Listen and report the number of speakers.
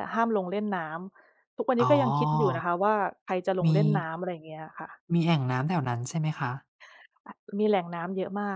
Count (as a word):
two